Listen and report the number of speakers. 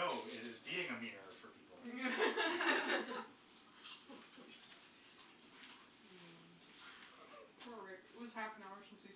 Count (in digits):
2